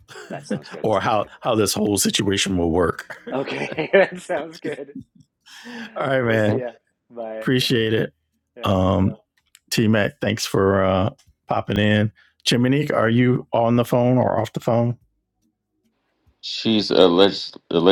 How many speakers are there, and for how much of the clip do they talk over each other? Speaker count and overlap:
3, about 4%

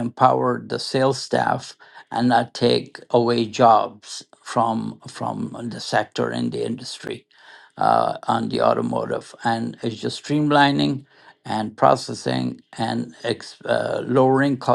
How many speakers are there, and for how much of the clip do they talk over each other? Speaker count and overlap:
1, no overlap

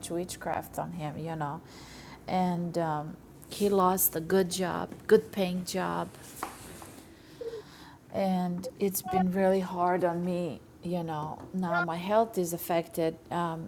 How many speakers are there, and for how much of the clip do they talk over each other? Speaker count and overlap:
1, no overlap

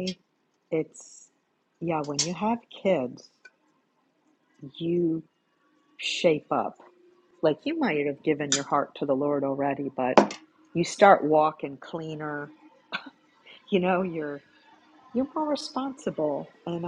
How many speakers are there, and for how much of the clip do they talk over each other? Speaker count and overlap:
1, no overlap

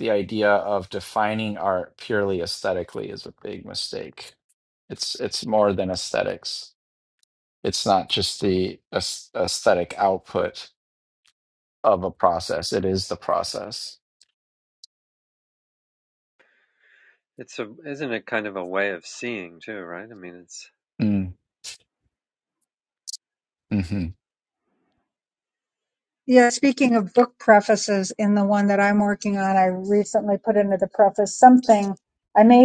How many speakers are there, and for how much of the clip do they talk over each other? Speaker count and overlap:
3, no overlap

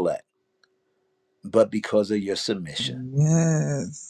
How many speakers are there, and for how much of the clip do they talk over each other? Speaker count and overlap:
2, about 3%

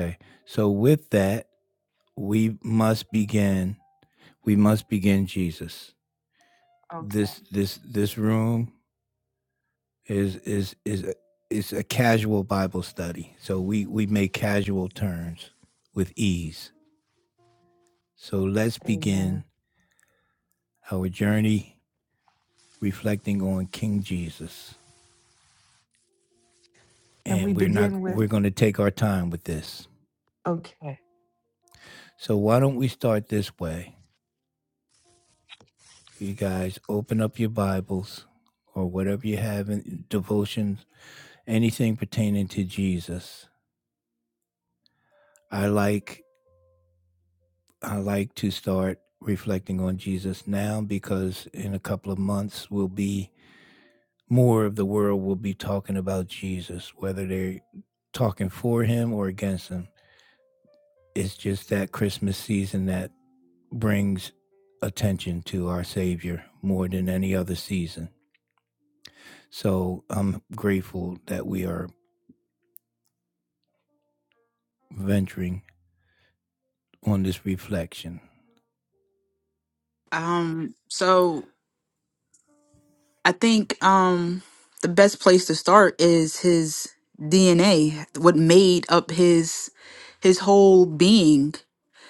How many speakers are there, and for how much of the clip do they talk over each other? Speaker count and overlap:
3, about 2%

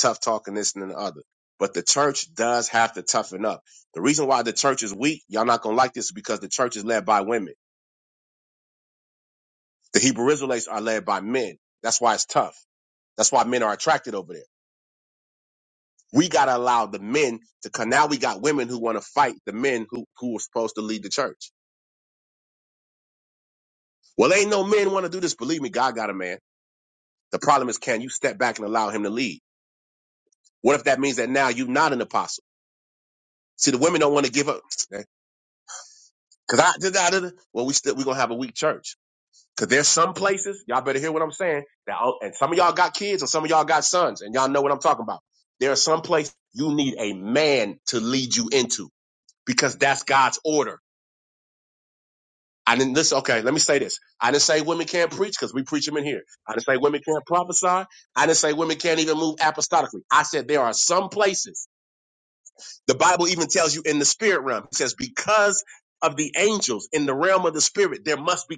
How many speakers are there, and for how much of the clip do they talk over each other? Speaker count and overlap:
1, no overlap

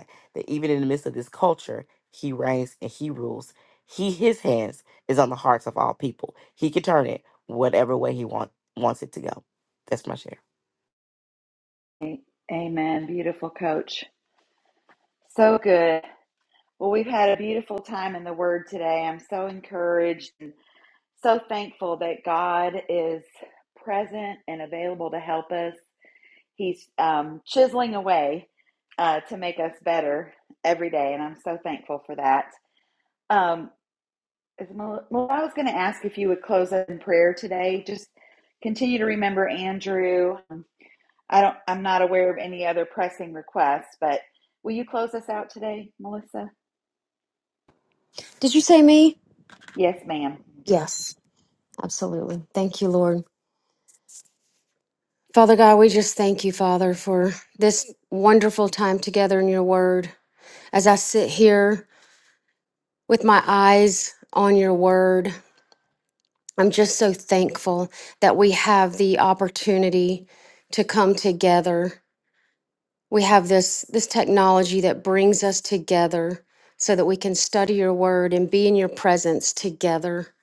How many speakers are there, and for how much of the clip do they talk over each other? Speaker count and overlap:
3, no overlap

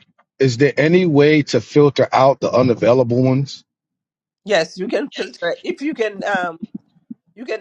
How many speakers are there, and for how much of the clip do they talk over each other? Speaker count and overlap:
2, no overlap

